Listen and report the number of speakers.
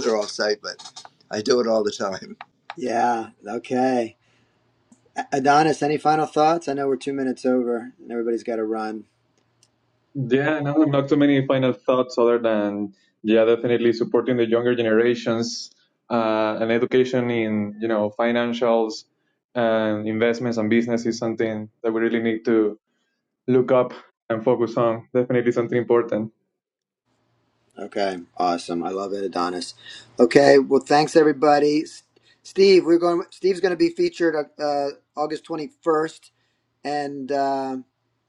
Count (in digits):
3